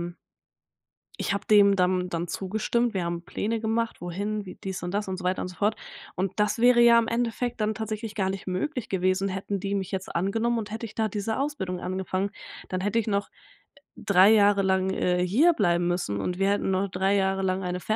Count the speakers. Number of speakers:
1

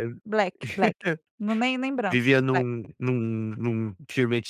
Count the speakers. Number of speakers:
2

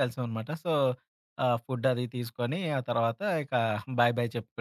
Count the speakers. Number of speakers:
1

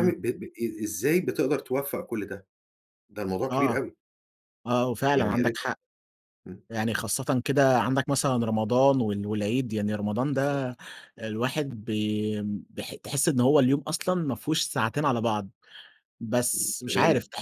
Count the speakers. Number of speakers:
2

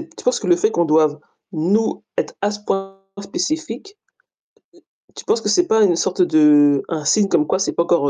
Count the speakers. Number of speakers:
1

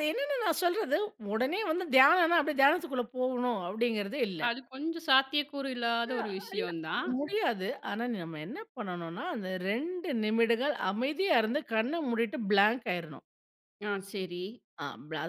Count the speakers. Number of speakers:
2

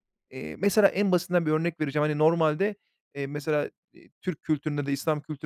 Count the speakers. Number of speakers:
1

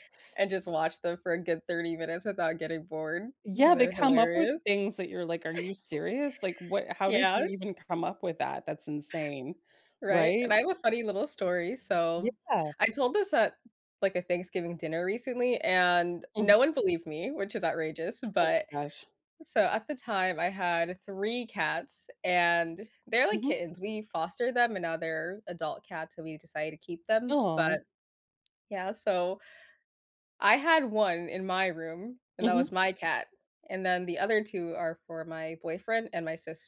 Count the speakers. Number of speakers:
2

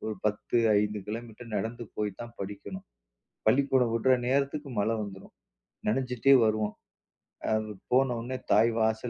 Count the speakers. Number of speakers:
1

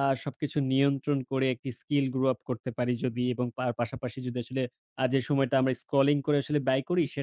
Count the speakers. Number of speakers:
1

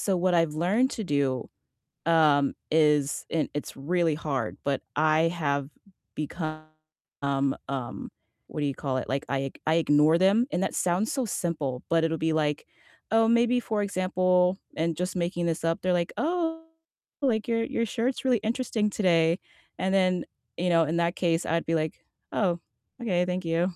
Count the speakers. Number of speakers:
1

